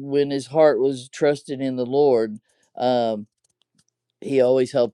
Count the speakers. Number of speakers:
1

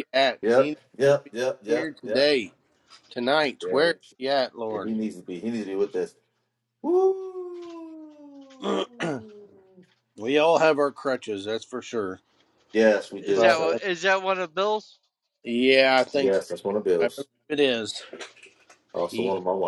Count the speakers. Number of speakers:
3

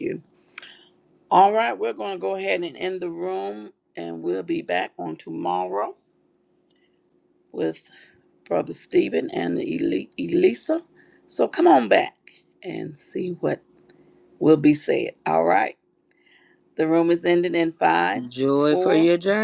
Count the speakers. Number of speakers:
2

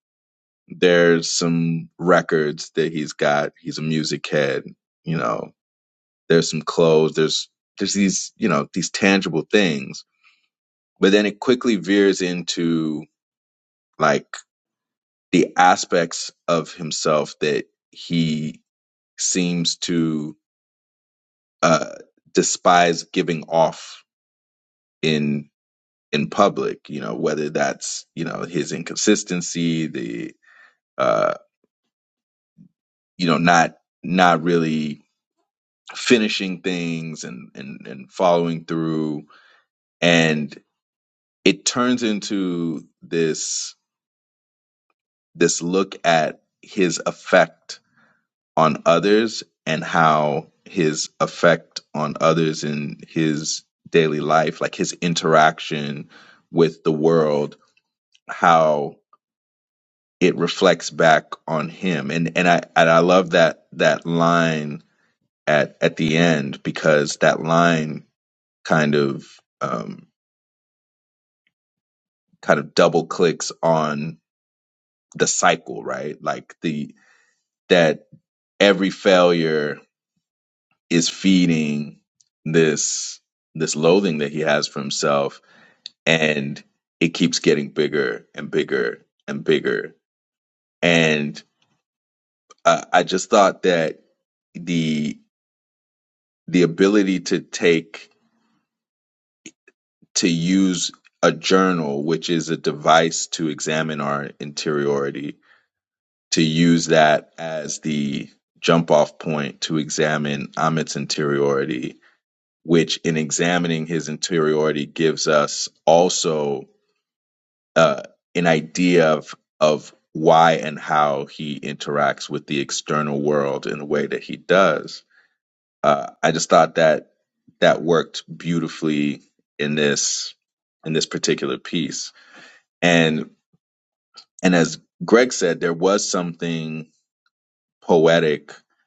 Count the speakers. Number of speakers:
1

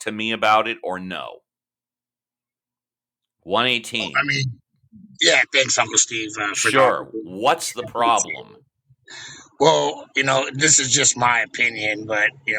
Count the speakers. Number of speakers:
2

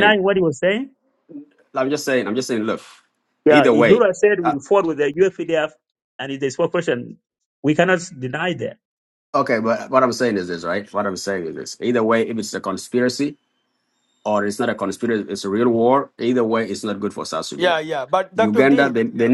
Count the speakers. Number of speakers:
3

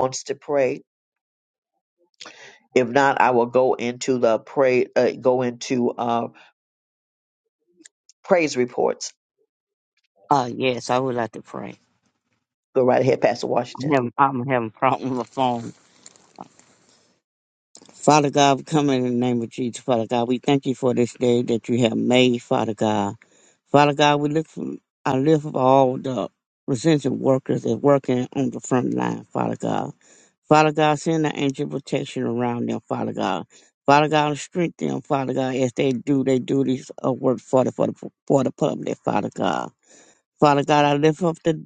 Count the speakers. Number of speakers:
2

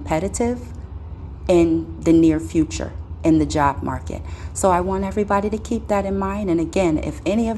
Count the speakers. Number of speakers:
1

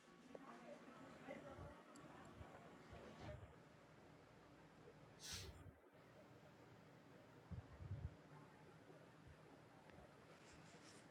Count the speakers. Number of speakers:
0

